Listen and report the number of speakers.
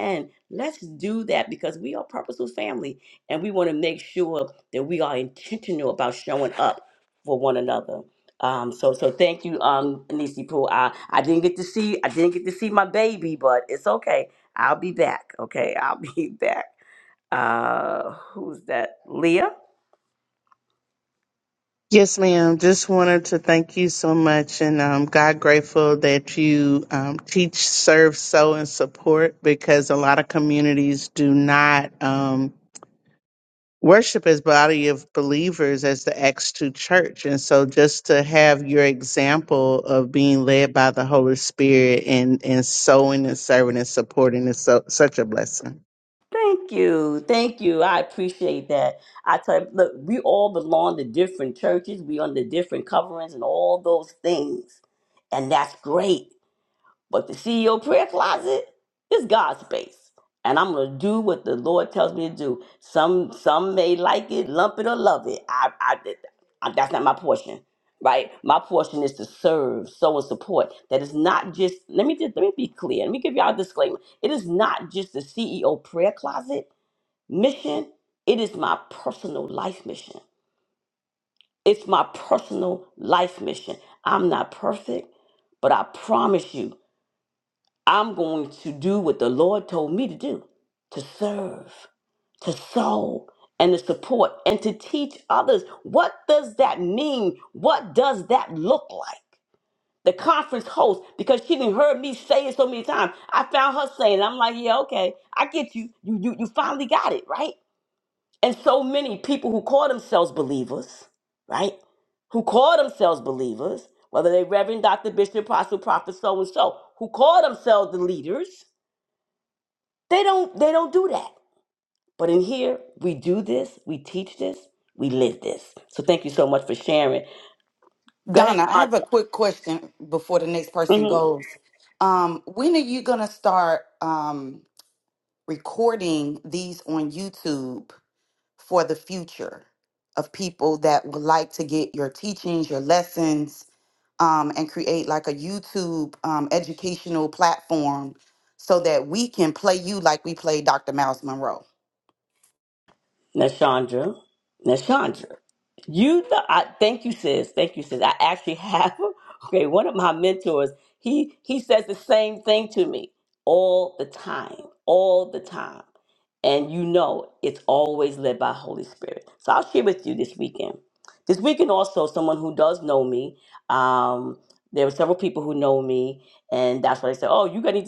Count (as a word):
three